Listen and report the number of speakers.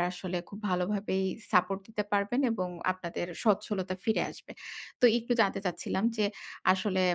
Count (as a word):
one